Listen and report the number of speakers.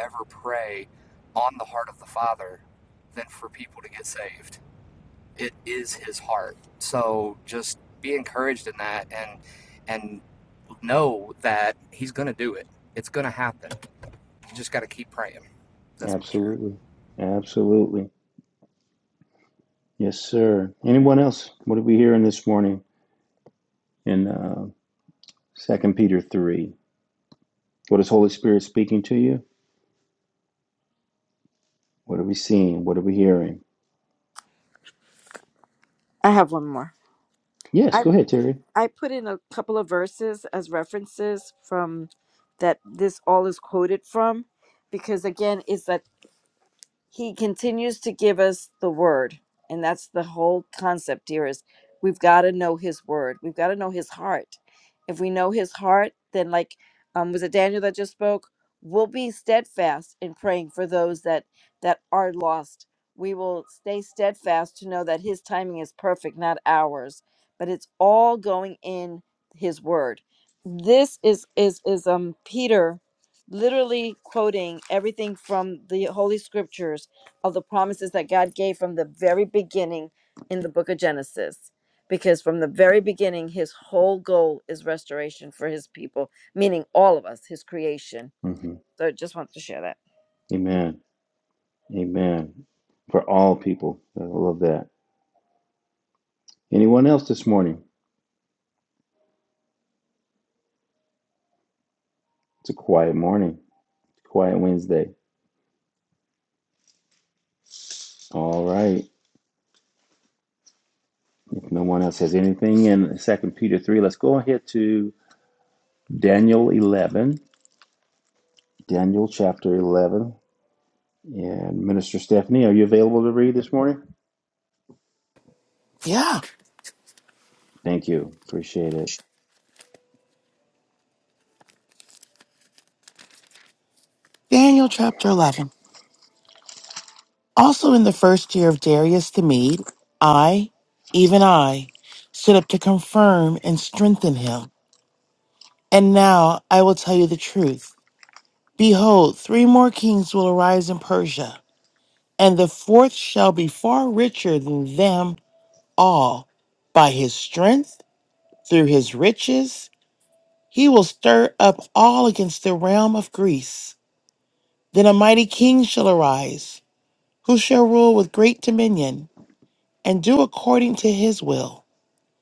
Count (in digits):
4